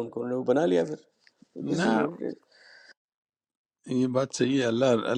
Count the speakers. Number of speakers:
two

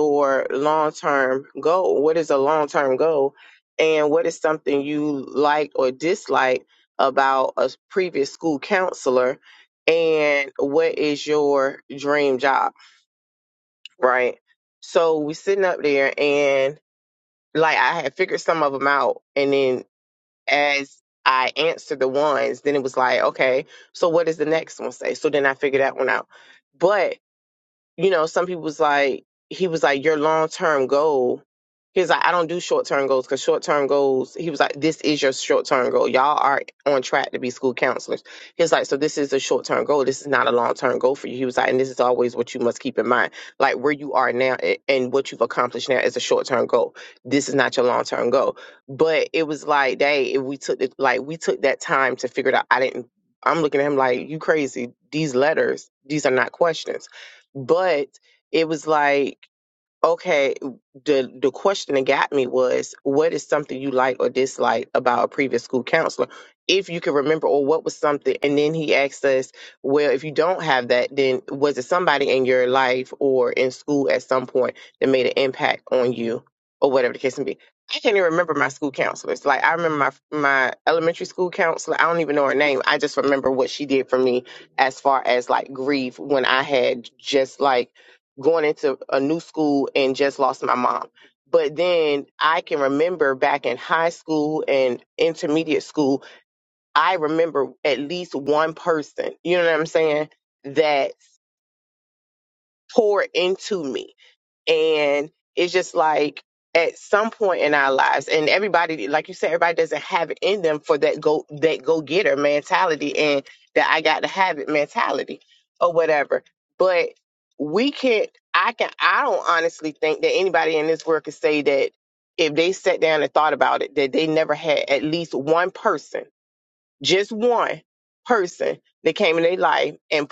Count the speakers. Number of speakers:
one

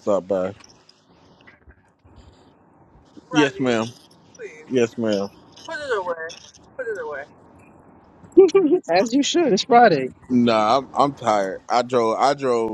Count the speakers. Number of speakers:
three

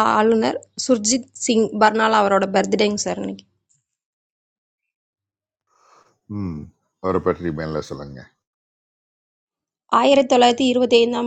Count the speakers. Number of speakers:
two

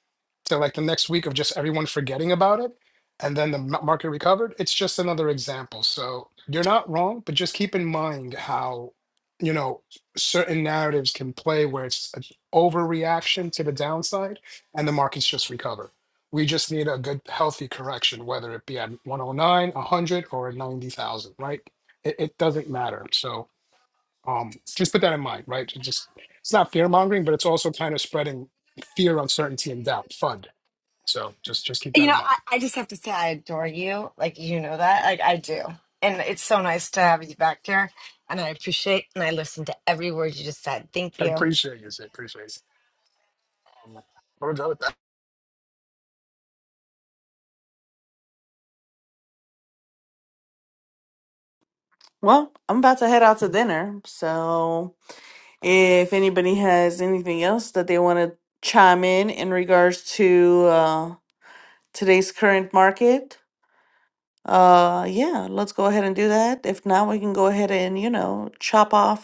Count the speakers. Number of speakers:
three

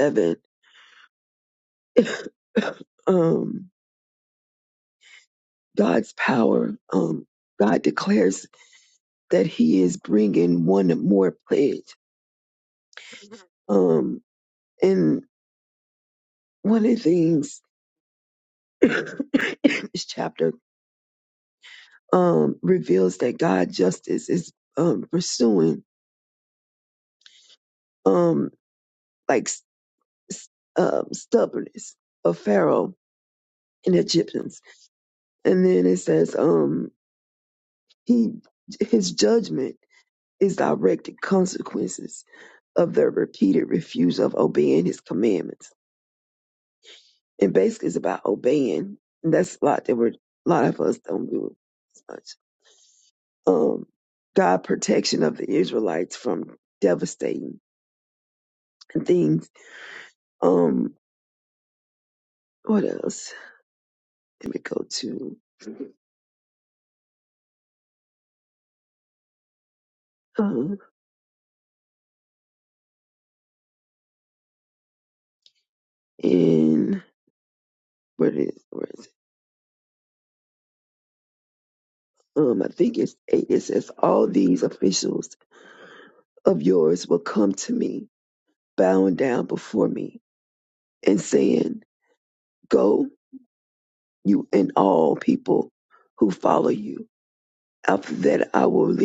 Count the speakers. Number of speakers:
one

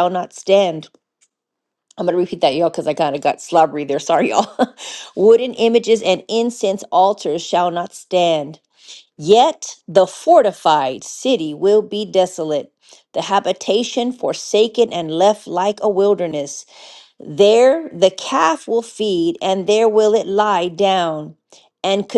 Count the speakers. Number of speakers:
one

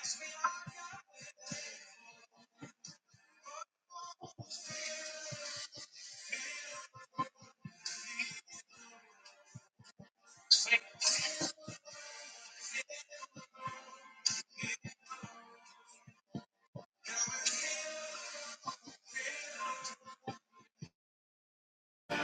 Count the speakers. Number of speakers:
zero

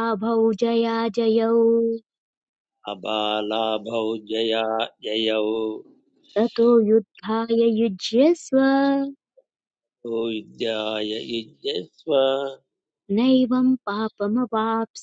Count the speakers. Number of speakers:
two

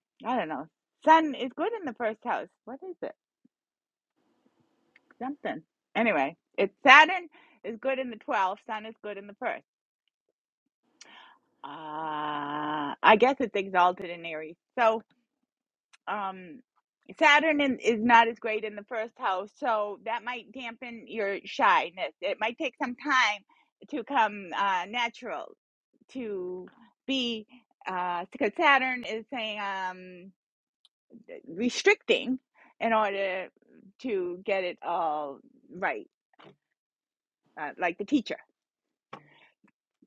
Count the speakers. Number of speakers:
one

